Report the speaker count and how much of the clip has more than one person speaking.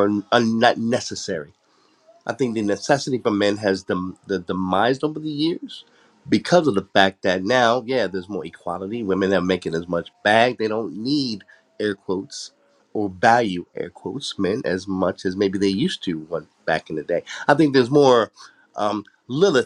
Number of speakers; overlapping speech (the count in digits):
1, no overlap